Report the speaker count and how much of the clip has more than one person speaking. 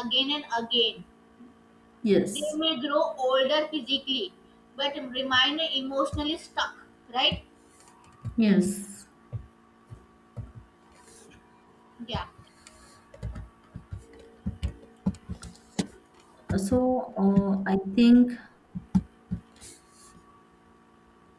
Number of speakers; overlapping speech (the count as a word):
two, under 1%